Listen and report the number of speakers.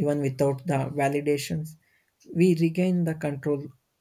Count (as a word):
one